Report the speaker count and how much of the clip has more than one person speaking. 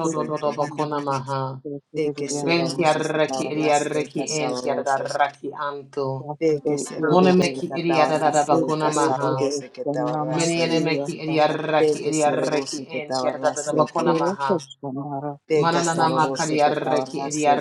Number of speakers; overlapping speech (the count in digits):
3, about 74%